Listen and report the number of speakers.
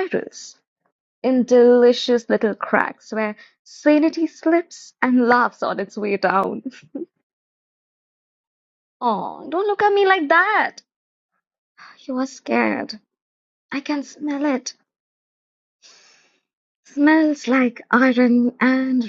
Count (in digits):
1